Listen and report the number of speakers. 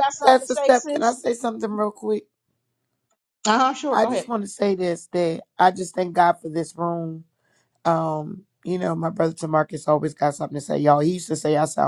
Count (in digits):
2